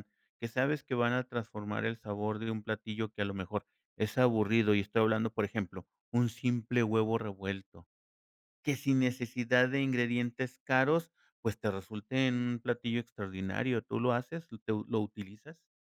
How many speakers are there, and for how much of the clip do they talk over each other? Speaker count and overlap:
1, no overlap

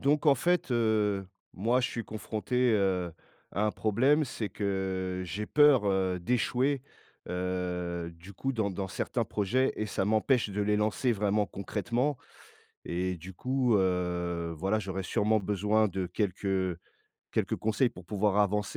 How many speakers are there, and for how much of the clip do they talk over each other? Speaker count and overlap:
1, no overlap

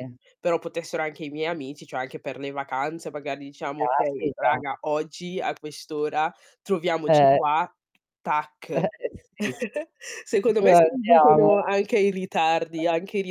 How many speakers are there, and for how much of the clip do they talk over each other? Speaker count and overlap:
2, about 10%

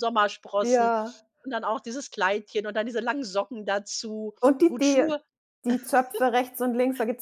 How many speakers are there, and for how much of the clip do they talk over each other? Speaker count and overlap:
2, about 9%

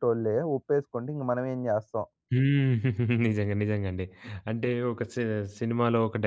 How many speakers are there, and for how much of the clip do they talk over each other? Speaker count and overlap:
2, no overlap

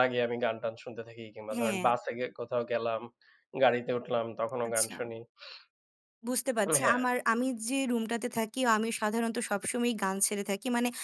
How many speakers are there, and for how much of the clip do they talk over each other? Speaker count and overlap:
2, about 9%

